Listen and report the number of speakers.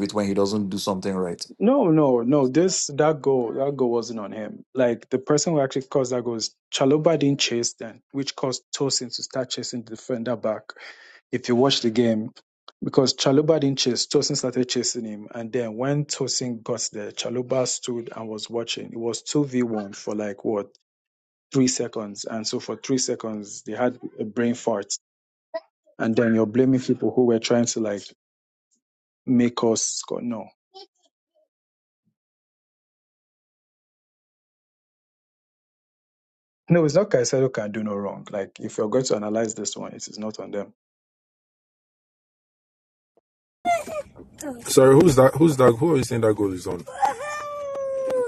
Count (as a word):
three